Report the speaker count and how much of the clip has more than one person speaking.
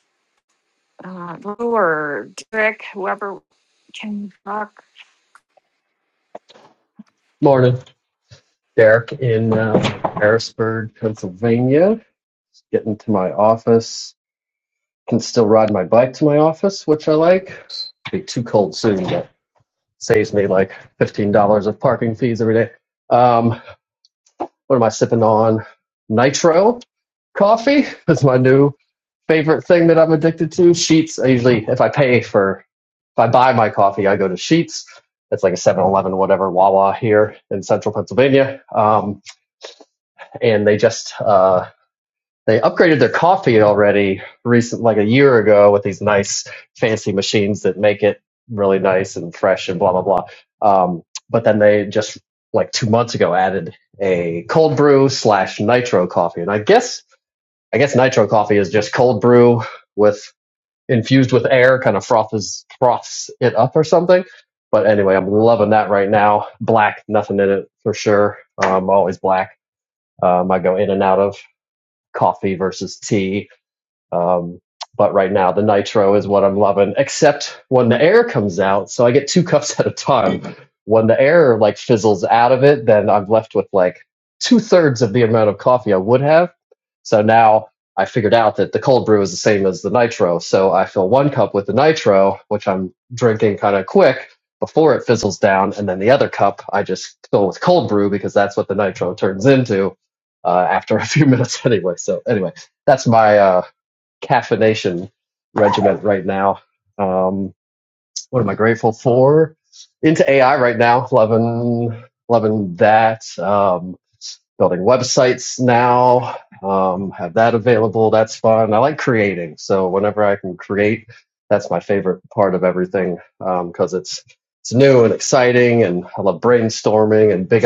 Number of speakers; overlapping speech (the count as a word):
two, no overlap